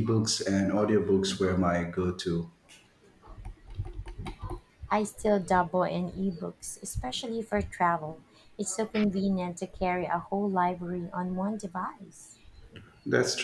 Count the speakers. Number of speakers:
2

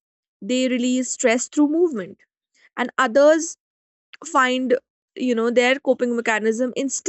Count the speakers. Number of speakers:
1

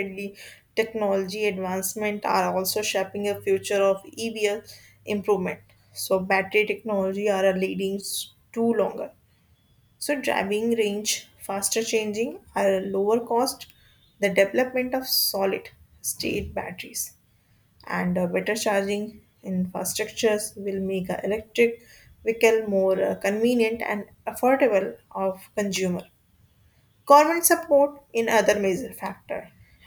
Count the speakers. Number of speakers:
1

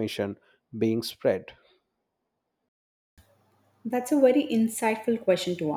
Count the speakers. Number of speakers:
2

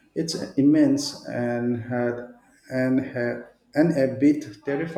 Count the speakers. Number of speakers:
1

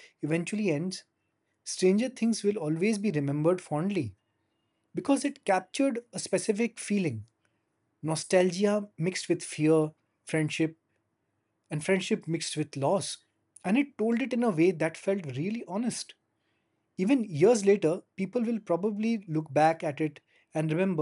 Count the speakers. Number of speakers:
1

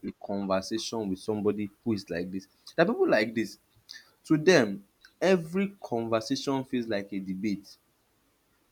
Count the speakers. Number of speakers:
1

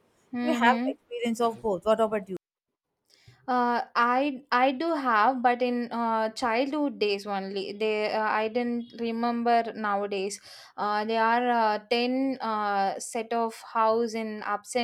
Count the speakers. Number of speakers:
2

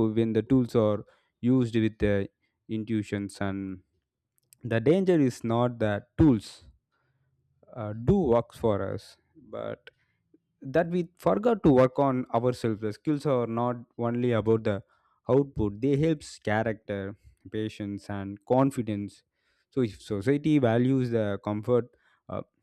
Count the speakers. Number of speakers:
1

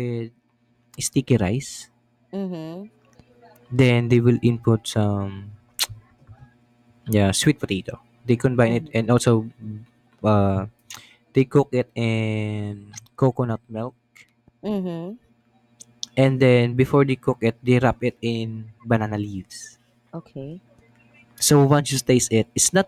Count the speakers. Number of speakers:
2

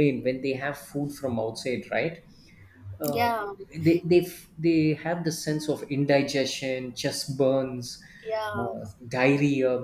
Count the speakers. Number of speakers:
2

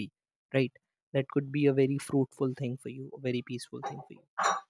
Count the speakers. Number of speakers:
1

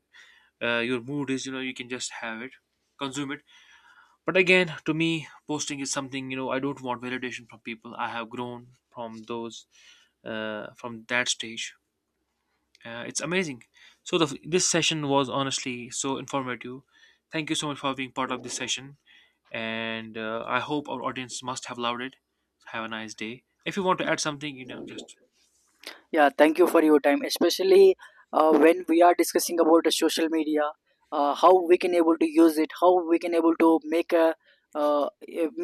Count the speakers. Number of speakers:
2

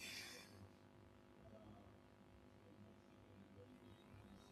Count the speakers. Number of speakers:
0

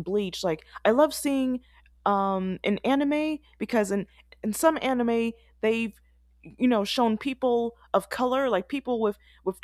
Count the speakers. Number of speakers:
1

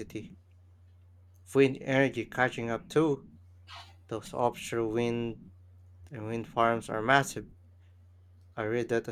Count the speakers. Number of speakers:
1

